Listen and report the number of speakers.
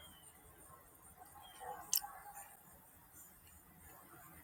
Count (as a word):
zero